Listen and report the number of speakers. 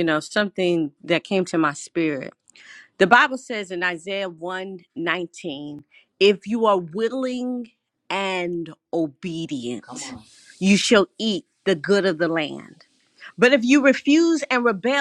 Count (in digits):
1